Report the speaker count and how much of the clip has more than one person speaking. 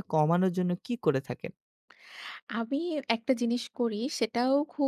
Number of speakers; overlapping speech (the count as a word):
two, no overlap